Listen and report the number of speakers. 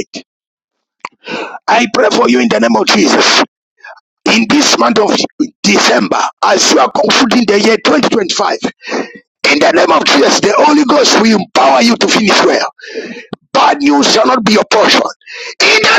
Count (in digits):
1